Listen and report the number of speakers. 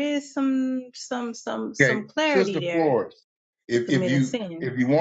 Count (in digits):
2